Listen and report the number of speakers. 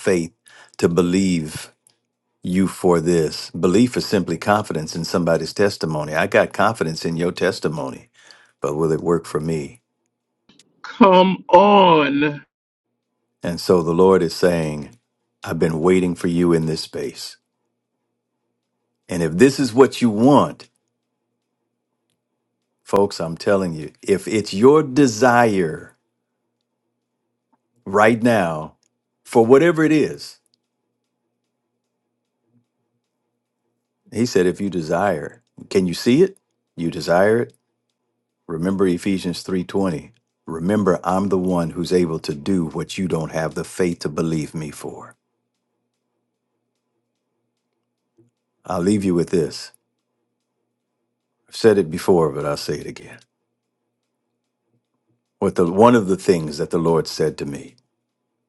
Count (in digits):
2